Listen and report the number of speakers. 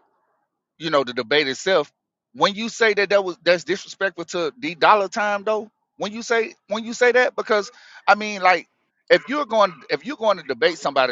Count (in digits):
1